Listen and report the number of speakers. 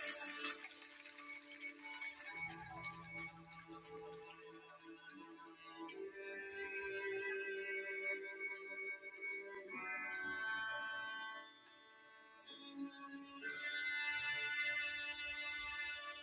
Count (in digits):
0